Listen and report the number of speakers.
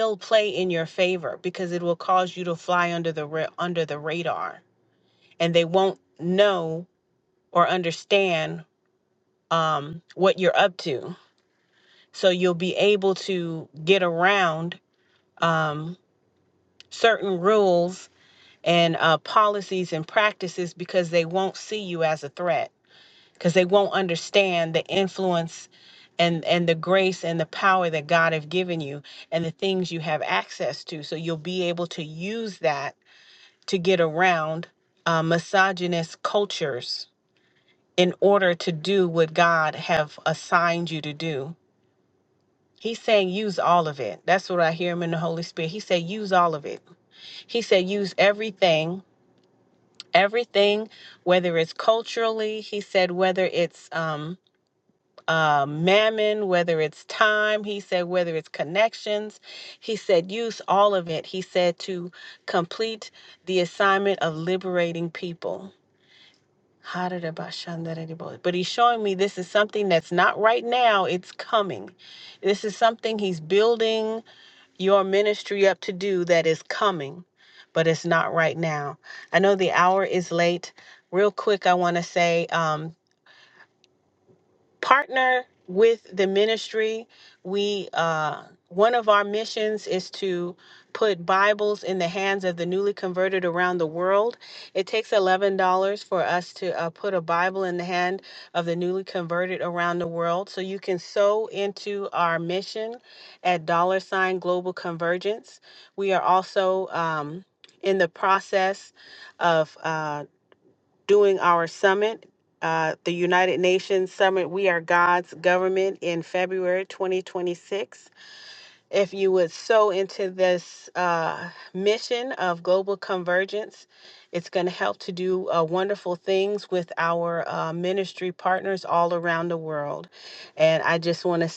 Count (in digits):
1